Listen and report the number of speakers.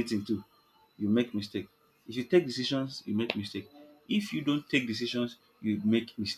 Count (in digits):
1